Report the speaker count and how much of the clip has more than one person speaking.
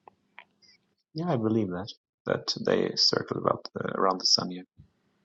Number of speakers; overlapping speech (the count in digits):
1, no overlap